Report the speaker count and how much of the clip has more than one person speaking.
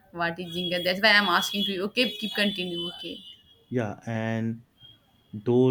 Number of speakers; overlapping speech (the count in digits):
2, no overlap